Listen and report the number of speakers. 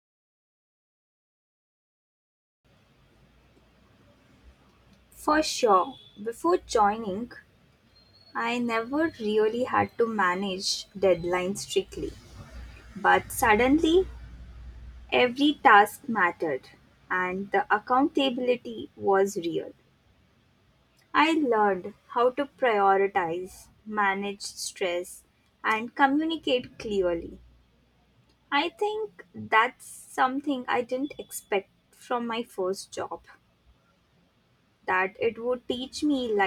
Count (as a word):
one